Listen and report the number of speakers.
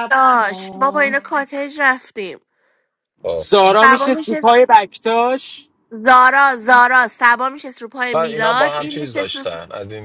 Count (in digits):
4